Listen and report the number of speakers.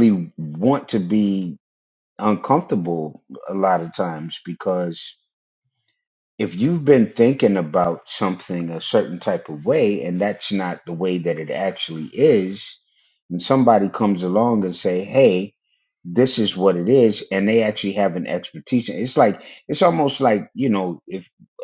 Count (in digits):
1